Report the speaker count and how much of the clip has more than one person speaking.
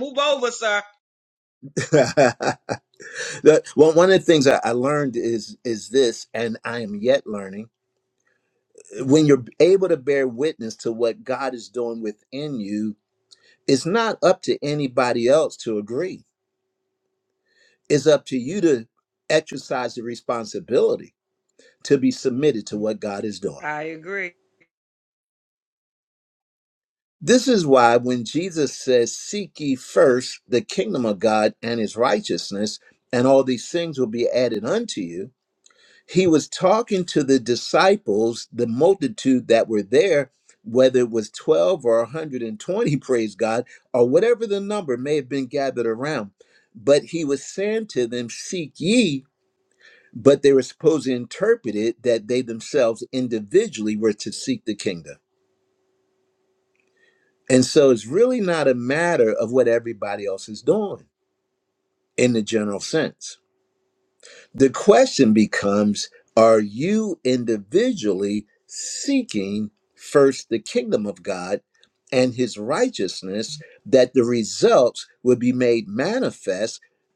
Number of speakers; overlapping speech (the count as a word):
two, no overlap